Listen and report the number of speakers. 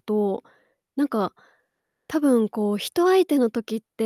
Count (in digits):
1